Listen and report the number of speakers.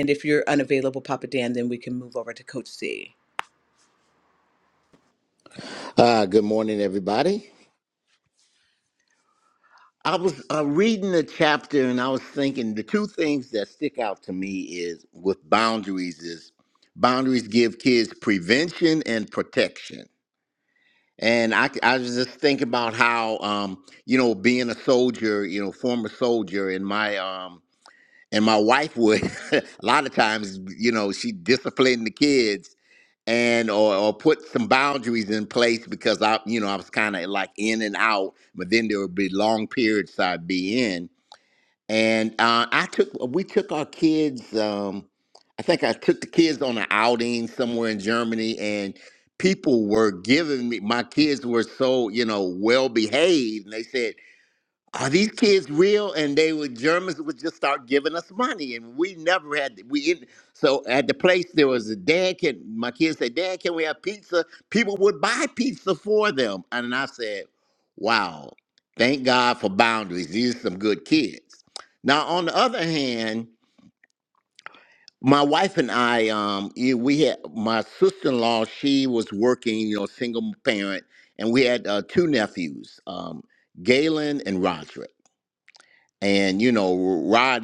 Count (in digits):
2